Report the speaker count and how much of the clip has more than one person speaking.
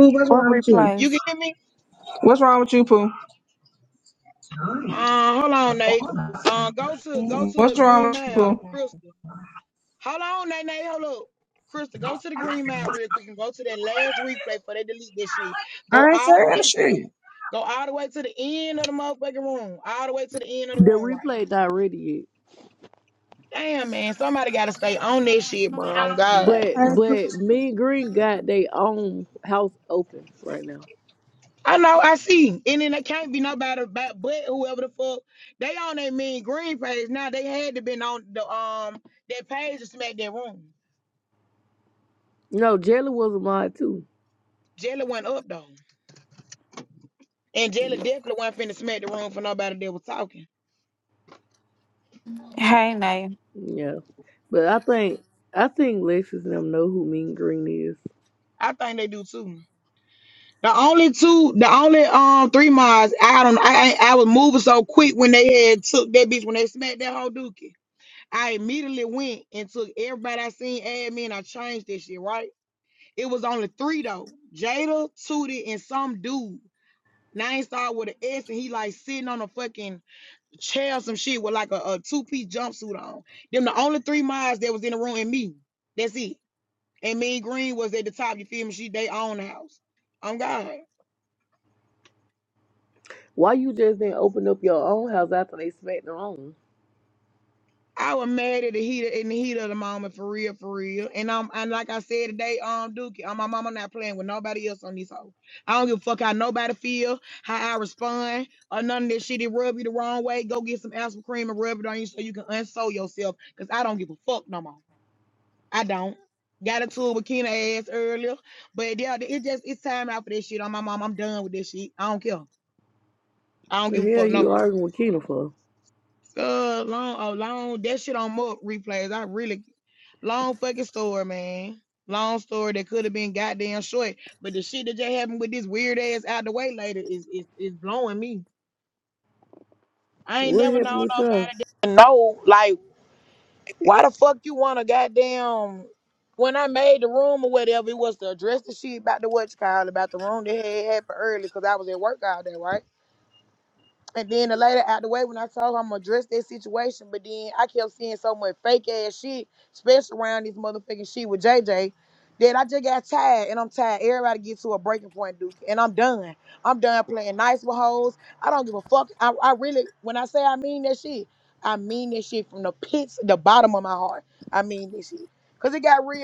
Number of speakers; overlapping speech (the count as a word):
four, about 3%